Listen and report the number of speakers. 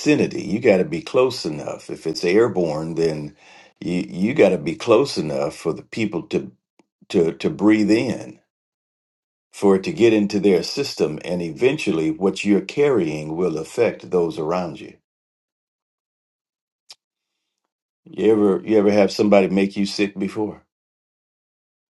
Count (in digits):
1